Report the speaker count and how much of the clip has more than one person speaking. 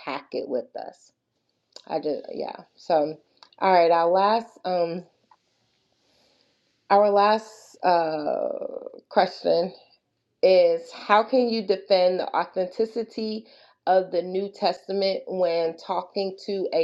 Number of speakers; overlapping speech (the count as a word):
one, no overlap